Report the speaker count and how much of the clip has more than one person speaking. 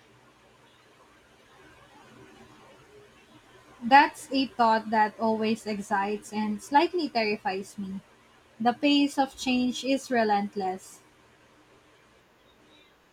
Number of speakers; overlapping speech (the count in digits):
1, no overlap